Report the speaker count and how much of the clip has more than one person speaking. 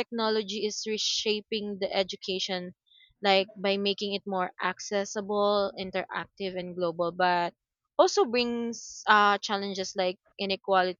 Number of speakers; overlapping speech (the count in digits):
1, no overlap